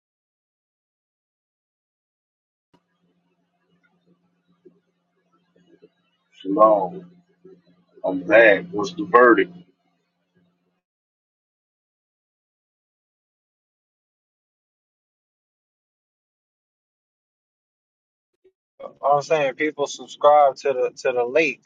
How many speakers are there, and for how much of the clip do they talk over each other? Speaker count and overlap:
two, no overlap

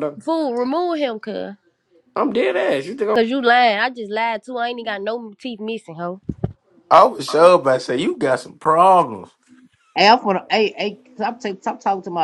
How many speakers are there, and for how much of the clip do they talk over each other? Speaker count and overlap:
four, no overlap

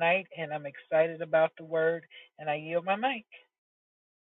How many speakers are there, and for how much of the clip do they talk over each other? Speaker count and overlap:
one, no overlap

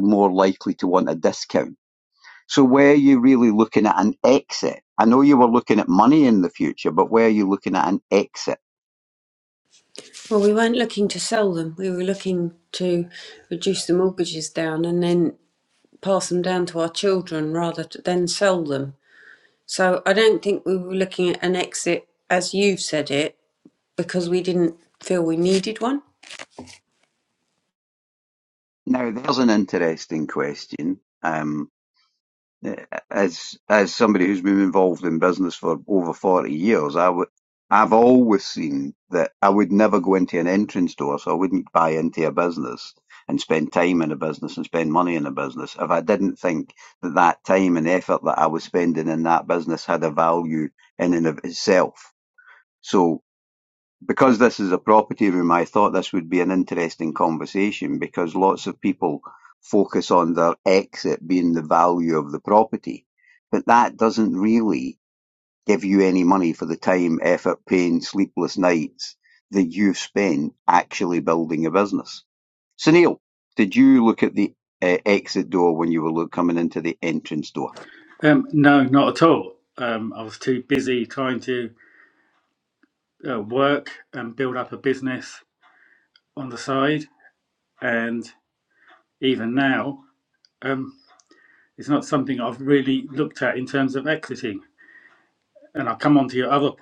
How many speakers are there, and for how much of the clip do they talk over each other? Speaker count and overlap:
three, no overlap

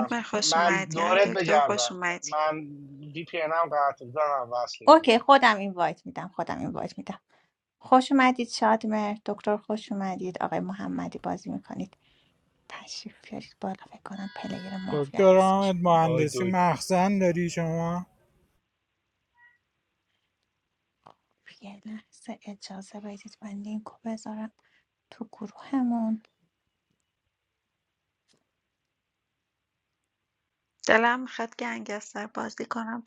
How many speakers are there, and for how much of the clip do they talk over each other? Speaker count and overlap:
four, about 9%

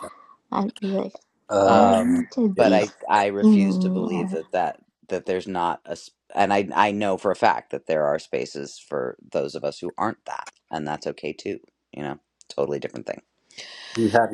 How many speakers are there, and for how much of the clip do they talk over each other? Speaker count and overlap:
three, about 11%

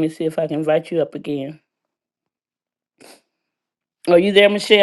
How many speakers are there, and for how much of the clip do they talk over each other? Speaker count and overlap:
one, no overlap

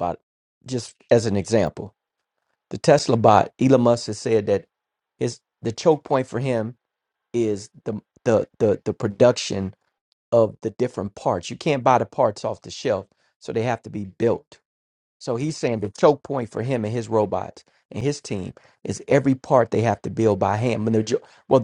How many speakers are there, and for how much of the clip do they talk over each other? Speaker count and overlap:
one, no overlap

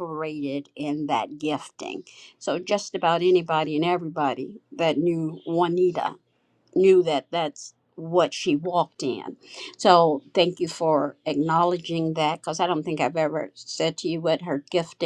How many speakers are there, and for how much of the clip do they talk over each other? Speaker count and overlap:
one, no overlap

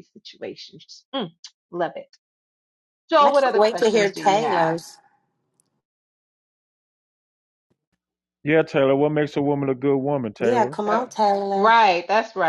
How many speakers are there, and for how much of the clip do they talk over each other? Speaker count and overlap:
three, about 18%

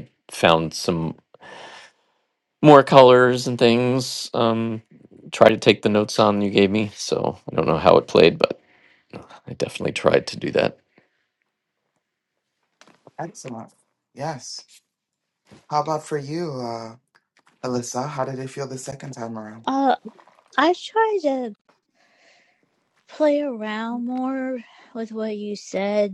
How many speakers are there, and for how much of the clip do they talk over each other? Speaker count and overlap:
three, no overlap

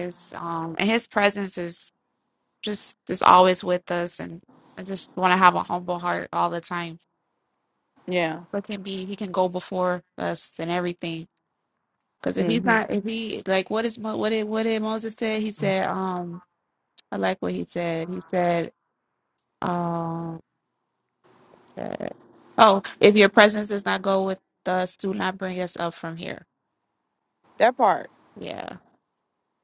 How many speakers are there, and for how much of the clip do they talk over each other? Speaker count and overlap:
two, about 1%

